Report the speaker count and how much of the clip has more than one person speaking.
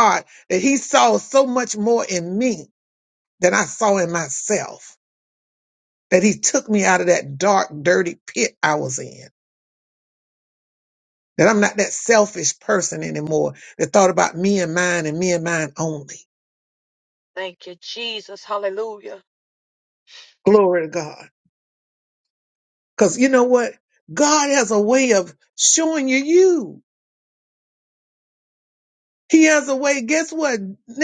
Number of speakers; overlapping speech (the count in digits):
2, no overlap